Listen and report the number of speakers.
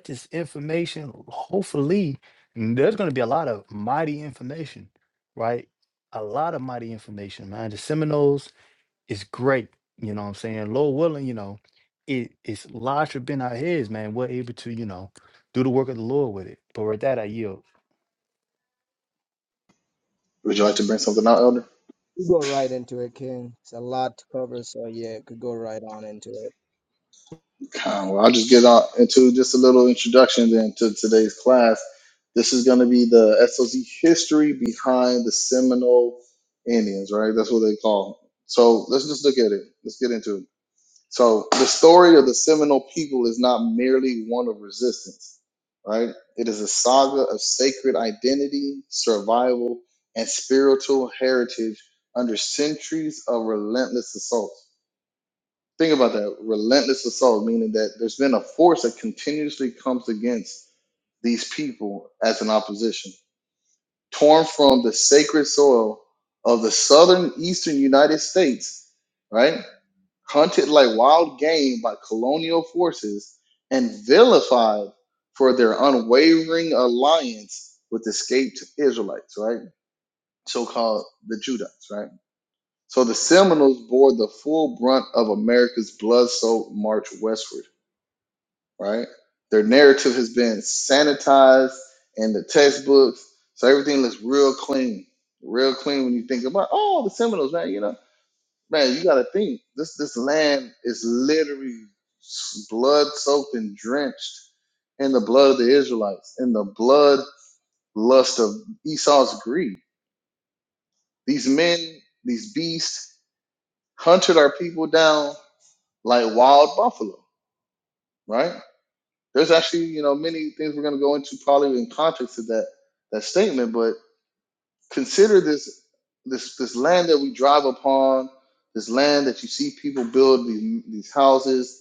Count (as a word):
three